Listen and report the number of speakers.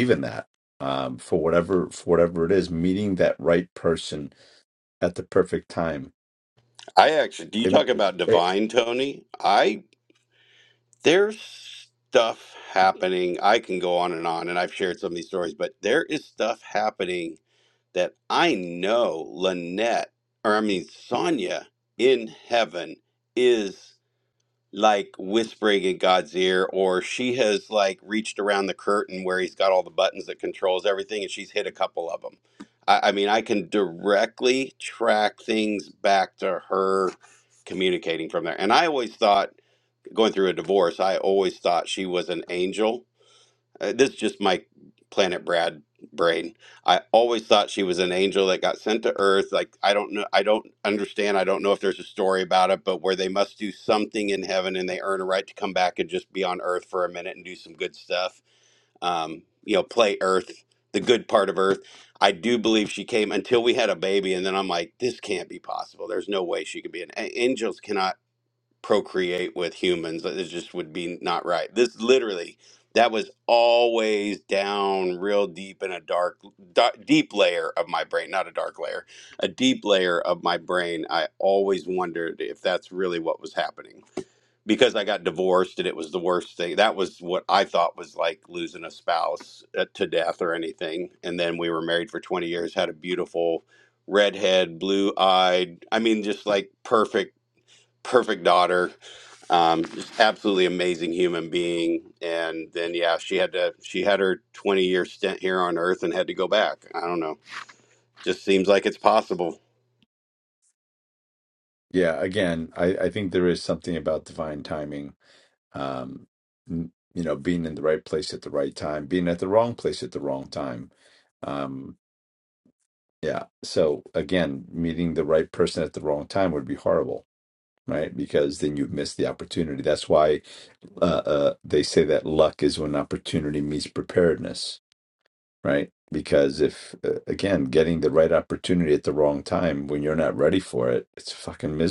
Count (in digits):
2